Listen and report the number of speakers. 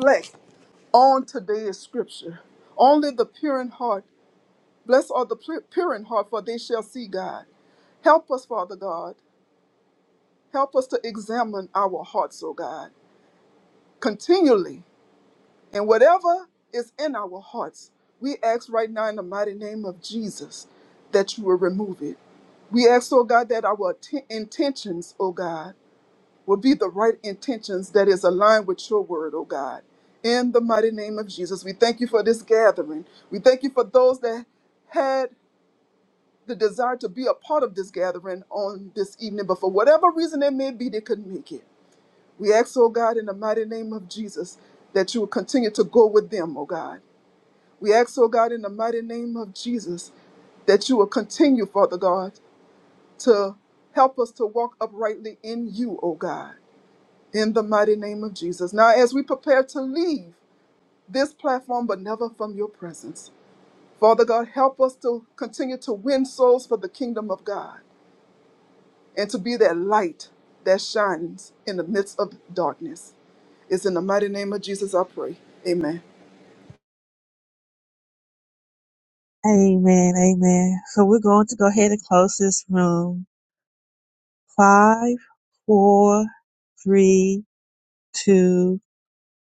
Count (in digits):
2